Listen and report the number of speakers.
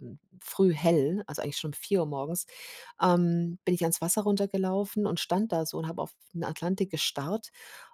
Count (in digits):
1